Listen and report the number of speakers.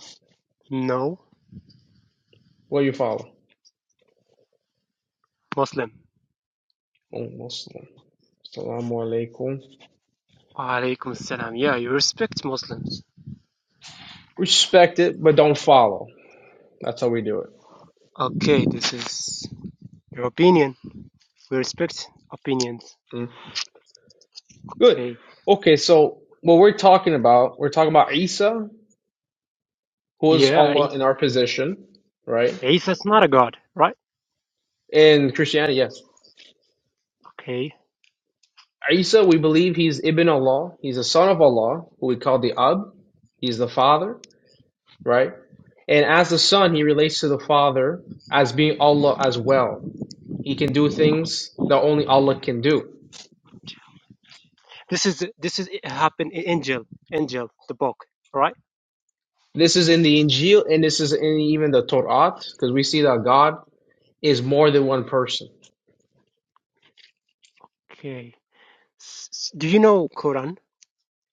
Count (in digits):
2